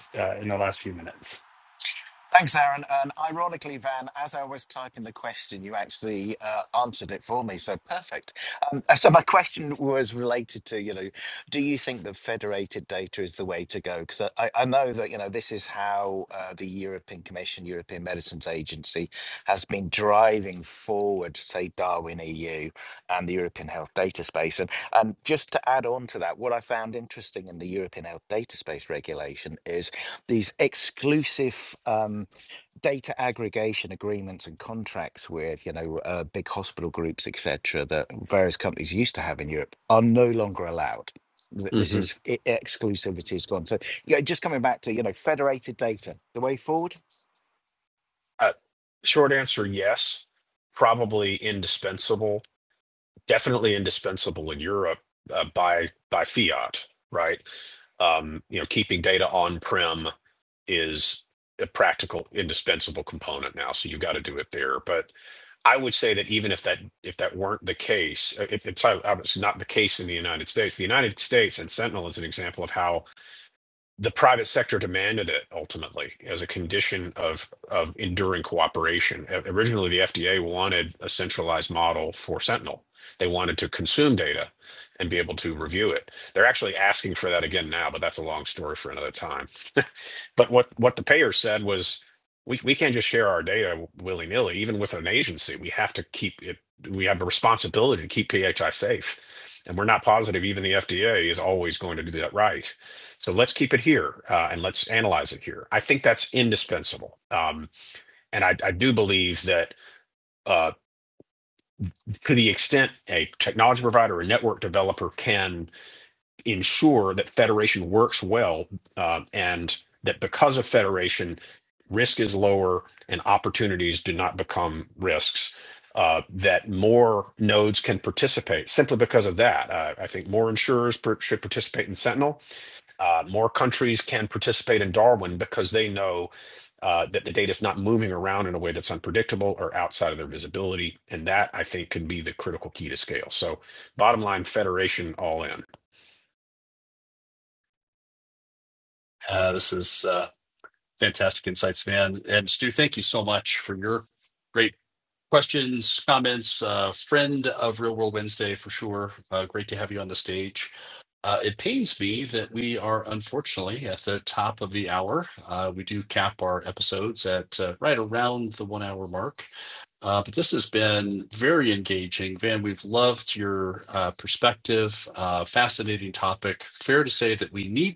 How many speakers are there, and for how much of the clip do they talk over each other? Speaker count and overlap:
four, under 1%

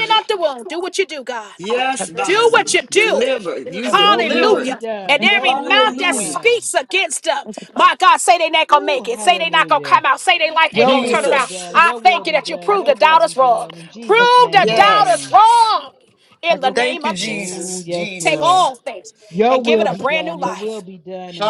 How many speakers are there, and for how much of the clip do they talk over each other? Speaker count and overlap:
three, about 60%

